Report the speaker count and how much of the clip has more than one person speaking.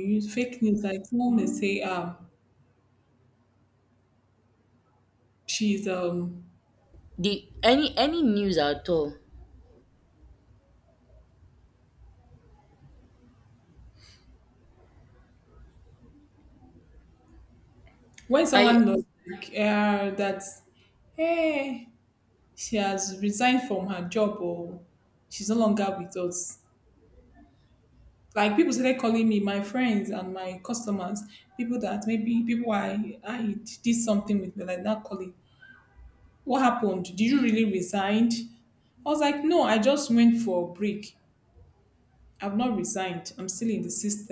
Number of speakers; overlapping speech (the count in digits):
2, about 1%